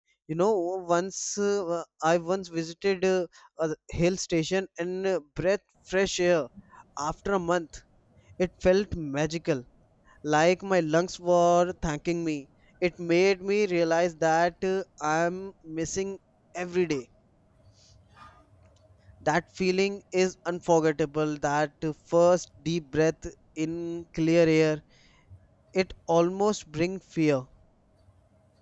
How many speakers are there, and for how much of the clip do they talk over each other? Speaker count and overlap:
1, no overlap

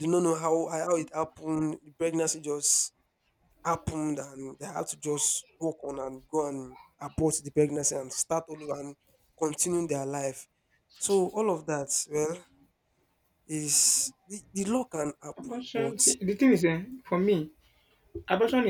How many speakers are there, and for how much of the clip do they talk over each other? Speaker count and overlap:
2, about 3%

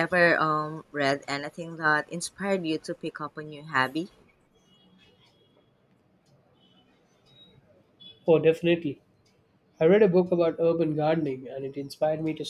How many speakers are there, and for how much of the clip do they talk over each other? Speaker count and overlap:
2, no overlap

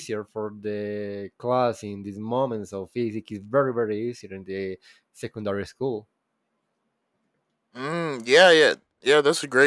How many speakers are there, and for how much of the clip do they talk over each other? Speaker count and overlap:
2, no overlap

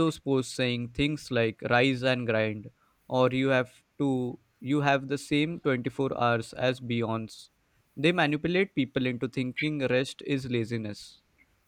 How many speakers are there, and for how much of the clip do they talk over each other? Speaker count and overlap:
1, no overlap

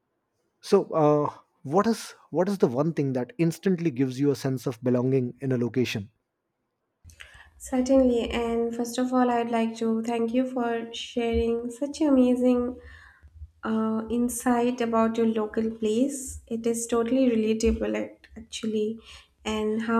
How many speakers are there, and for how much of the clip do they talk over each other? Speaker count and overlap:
2, no overlap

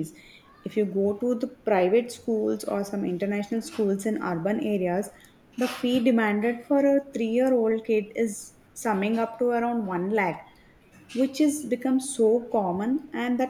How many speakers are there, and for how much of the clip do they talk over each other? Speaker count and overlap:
1, no overlap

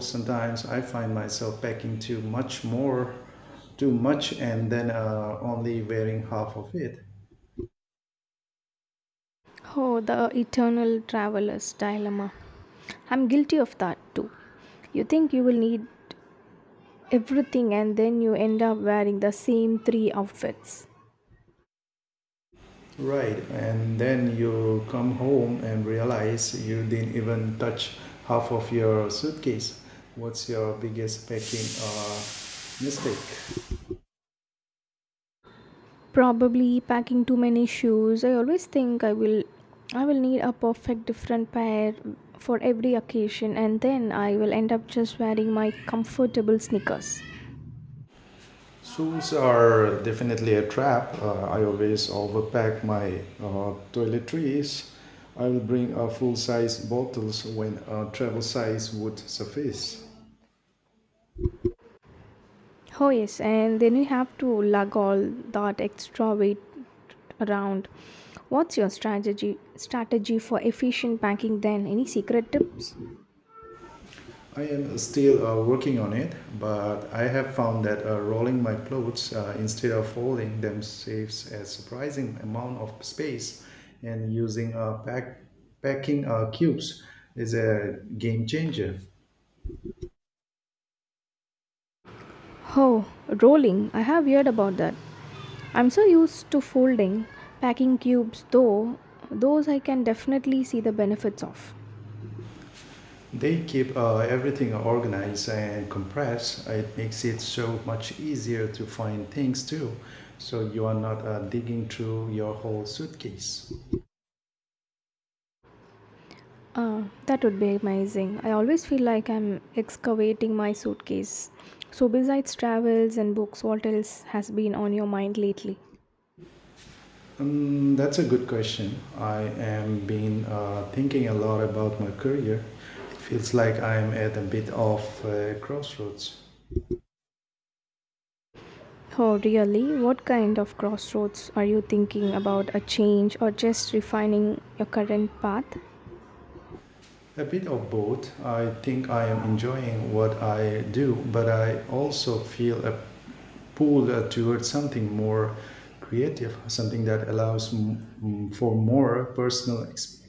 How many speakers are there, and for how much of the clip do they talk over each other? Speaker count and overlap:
2, no overlap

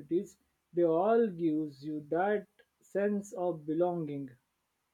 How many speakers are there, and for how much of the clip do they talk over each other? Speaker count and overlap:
1, no overlap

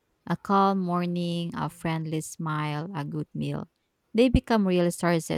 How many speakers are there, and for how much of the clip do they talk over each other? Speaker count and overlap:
1, no overlap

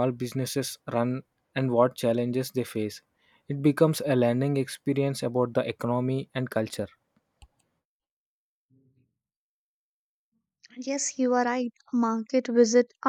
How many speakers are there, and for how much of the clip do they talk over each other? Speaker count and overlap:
2, no overlap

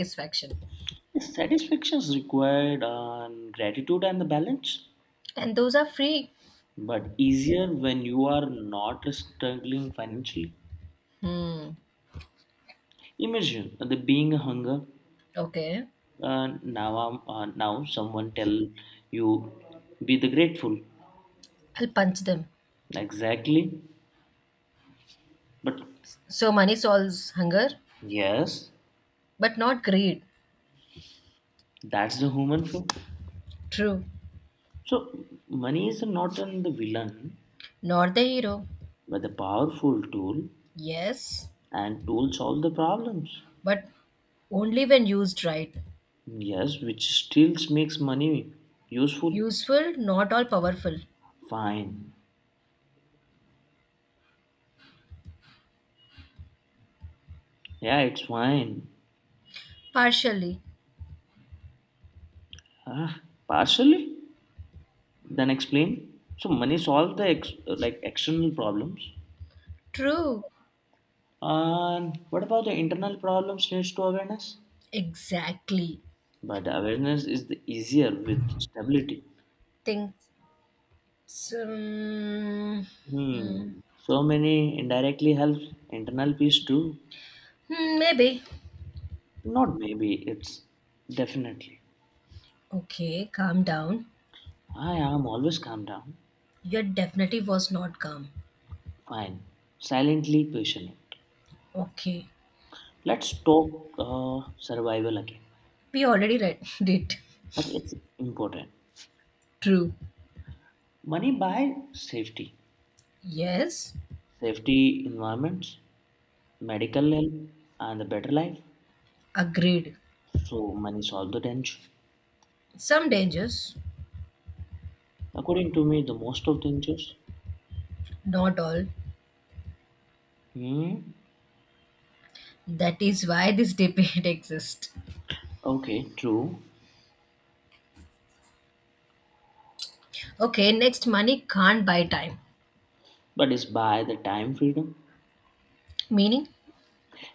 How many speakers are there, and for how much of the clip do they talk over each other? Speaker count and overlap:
2, under 1%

